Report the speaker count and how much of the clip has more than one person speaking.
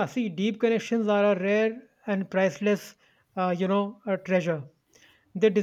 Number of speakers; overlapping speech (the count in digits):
1, no overlap